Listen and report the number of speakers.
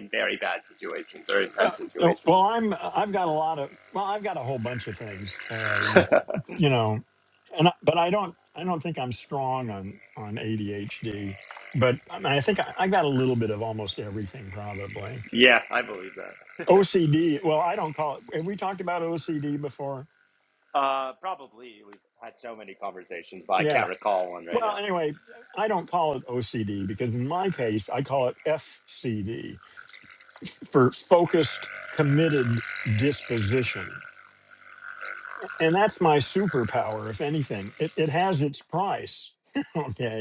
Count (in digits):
2